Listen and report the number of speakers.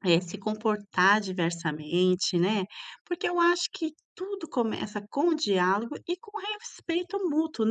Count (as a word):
one